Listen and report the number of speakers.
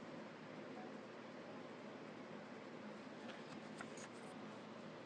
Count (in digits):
0